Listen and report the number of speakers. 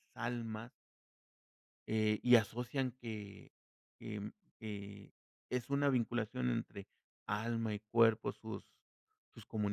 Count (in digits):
1